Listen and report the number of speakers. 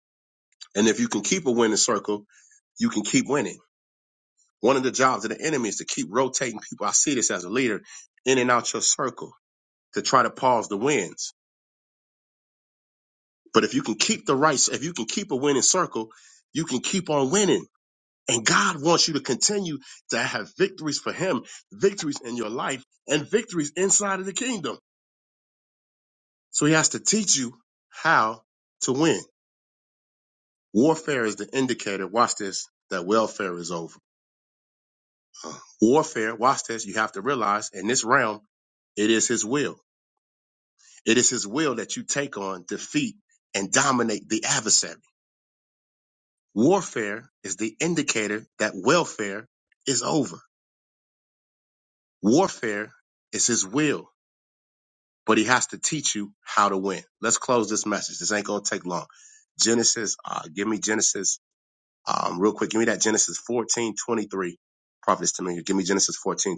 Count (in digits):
1